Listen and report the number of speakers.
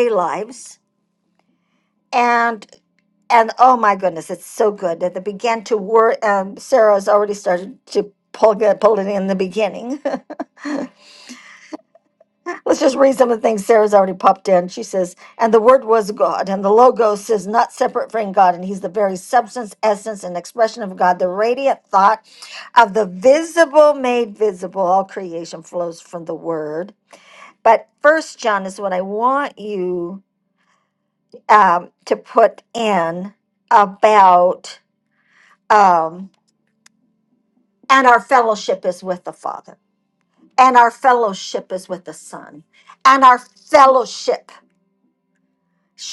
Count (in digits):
1